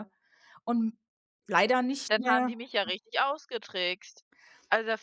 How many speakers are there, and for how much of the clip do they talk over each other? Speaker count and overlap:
two, about 9%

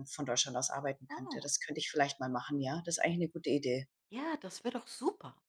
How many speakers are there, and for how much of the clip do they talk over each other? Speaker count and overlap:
two, about 7%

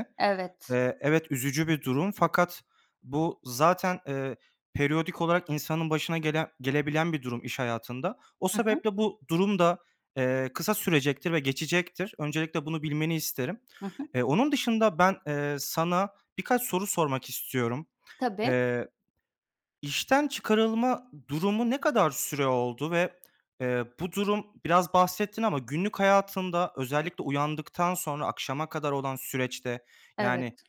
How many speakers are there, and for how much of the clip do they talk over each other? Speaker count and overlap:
two, about 2%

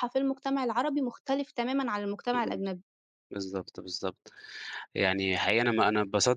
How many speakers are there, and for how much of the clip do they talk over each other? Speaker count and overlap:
two, no overlap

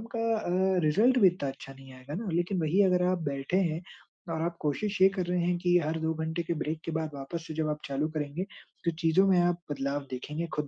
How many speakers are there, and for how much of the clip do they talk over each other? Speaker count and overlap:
one, no overlap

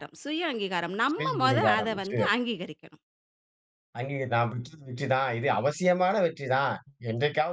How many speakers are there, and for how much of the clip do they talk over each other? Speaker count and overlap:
two, no overlap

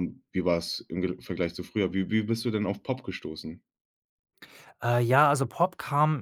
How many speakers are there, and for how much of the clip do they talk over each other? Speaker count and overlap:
two, no overlap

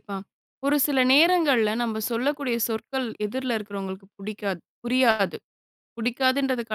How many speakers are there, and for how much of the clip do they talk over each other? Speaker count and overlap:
one, no overlap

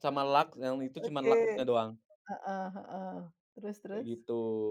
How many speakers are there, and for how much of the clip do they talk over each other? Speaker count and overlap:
two, about 17%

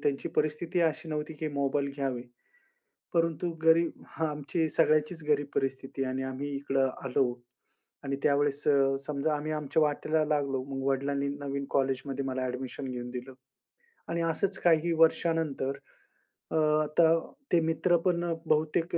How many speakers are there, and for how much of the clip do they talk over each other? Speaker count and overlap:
one, no overlap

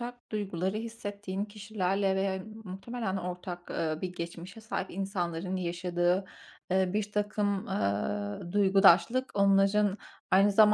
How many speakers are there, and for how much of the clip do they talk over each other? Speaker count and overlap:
one, no overlap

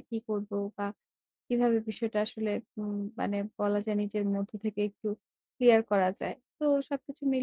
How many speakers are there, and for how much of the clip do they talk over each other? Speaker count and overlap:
one, no overlap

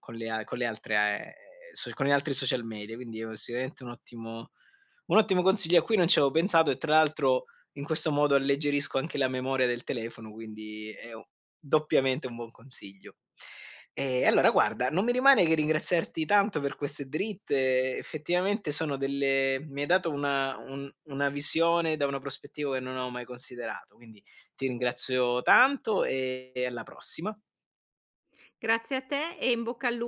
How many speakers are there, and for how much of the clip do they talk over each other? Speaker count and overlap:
two, no overlap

